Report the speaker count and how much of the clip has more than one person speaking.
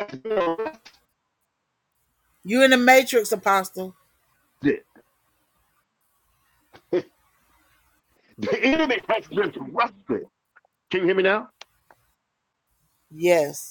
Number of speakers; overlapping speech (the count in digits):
2, no overlap